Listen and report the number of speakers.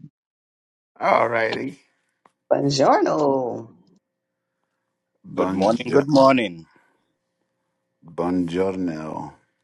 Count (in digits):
3